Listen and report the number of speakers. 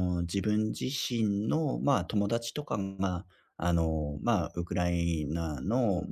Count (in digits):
1